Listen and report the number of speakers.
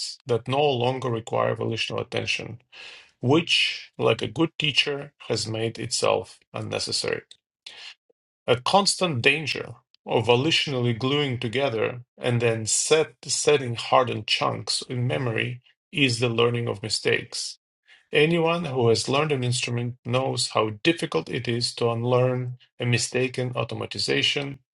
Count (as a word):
one